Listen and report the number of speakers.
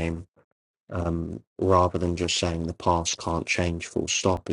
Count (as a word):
one